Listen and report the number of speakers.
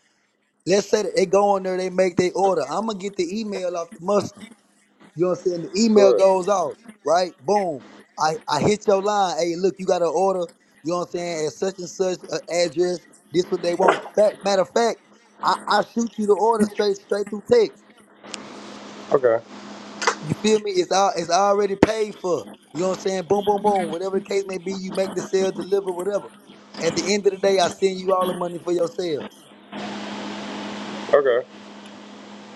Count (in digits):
2